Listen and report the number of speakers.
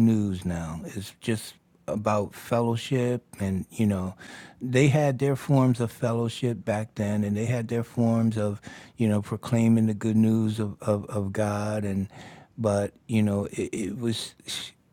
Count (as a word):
one